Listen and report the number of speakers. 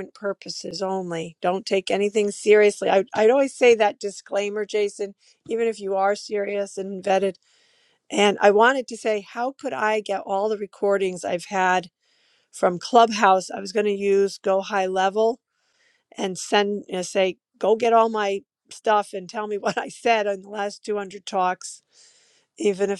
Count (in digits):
1